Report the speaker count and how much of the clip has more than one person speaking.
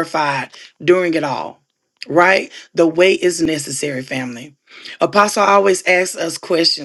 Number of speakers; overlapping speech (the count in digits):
1, no overlap